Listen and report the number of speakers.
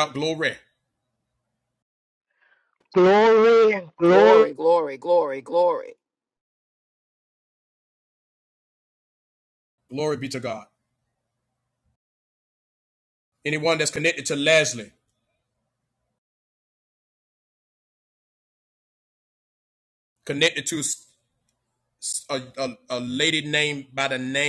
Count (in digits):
3